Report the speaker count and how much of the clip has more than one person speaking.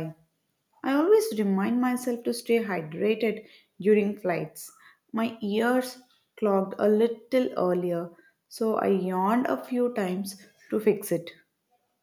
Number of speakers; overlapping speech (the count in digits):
1, no overlap